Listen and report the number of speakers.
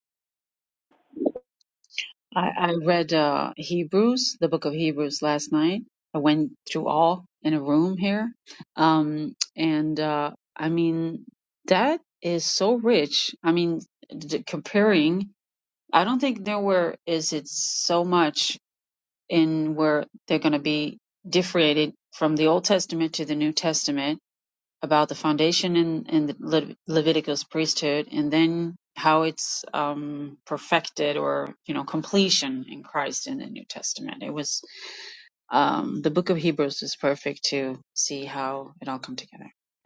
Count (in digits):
1